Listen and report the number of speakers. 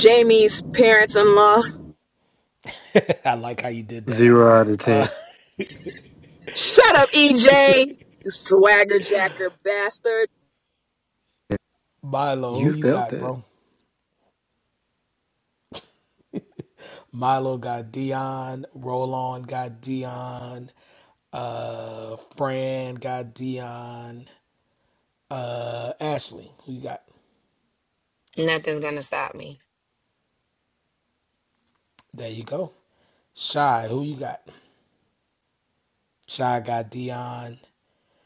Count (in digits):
4